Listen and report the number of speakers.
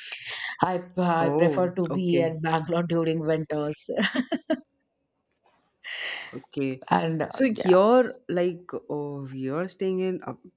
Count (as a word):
two